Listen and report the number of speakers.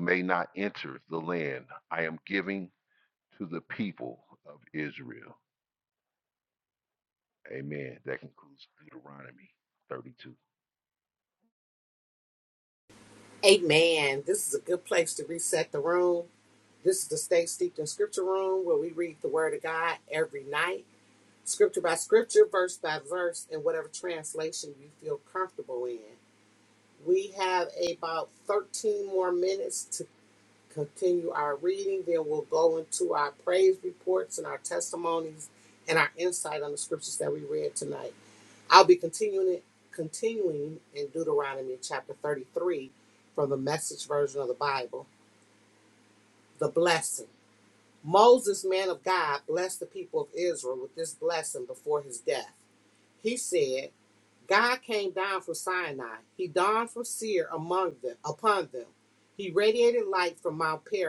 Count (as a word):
two